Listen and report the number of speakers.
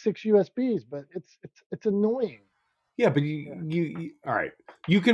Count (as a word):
two